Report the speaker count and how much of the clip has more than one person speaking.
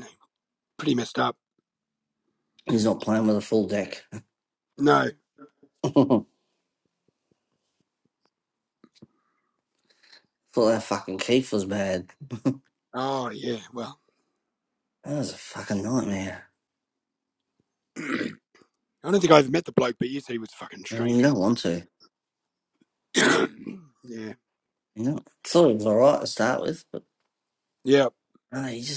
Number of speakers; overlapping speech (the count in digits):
2, about 1%